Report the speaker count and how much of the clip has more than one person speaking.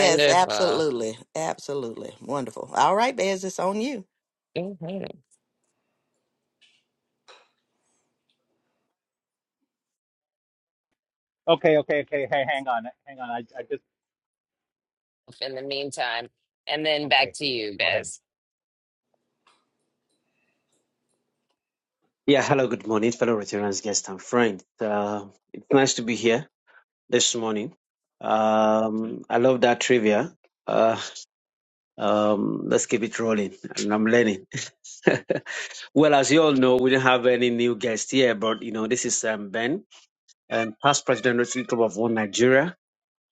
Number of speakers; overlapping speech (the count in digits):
4, about 3%